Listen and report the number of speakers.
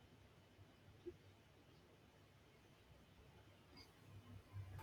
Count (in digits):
0